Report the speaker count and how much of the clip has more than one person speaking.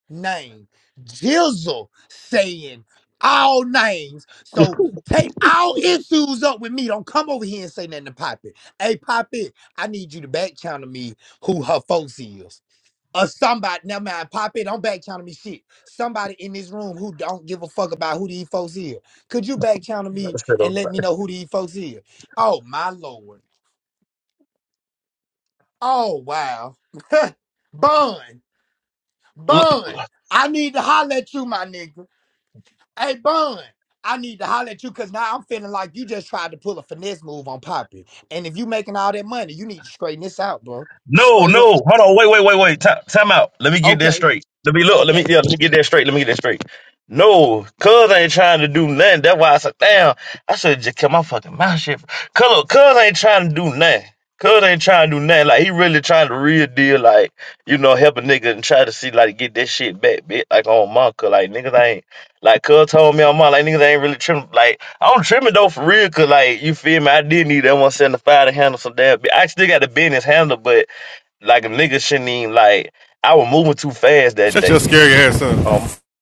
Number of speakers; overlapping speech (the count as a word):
three, about 3%